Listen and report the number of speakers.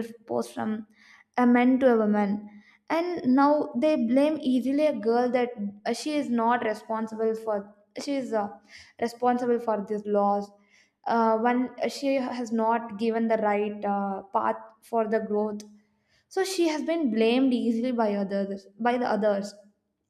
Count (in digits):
1